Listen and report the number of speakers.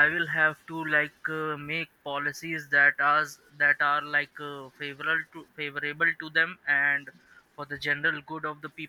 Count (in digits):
1